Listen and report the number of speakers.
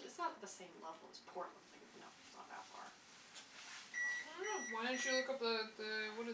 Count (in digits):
2